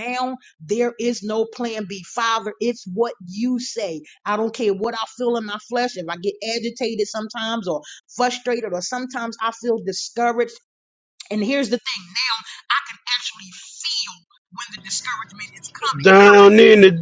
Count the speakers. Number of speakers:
two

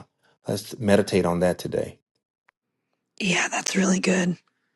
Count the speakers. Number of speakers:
two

